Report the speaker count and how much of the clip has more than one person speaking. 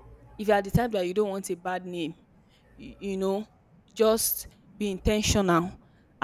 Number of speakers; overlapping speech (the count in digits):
1, no overlap